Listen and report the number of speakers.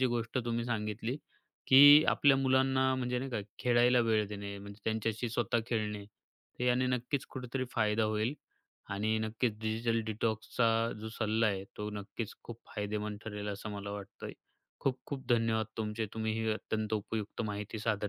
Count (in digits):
1